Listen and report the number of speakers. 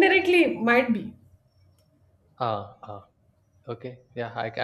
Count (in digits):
2